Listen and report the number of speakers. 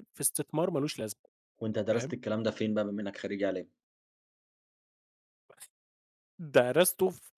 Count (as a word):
two